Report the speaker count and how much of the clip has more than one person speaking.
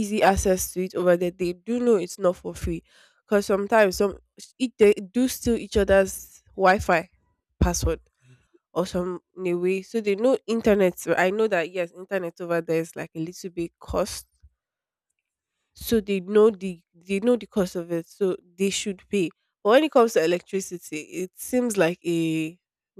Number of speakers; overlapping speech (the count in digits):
1, no overlap